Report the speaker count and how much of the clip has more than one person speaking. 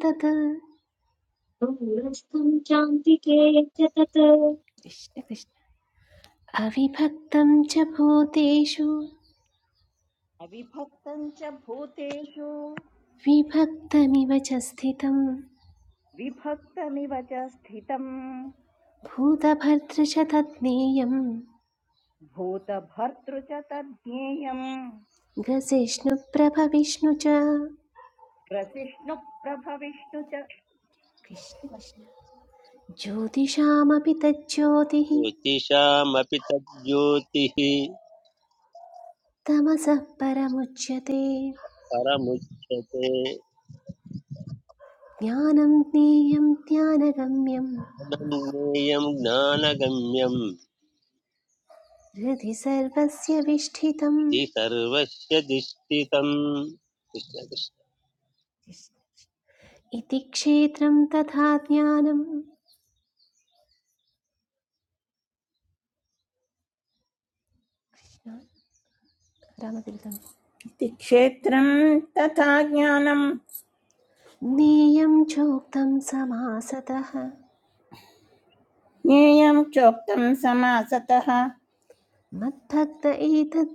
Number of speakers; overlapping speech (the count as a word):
five, under 1%